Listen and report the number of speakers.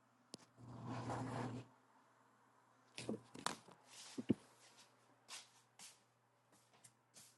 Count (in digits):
0